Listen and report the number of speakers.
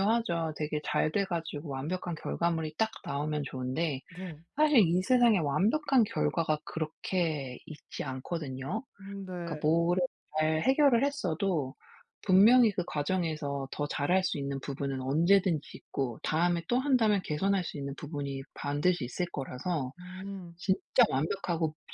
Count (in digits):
2